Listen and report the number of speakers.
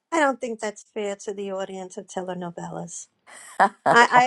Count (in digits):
1